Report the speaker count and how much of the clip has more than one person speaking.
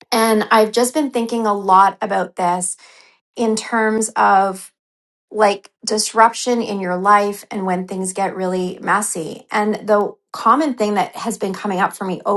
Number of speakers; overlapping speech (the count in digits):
1, no overlap